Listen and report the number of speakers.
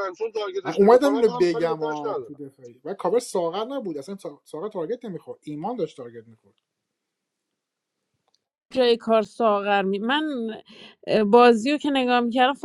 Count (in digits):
3